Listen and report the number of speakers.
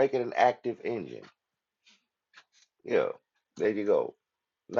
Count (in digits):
1